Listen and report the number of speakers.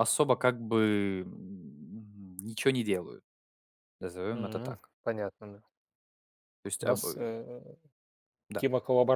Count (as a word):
two